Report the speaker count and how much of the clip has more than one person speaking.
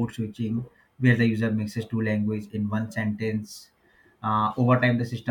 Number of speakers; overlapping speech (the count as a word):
one, no overlap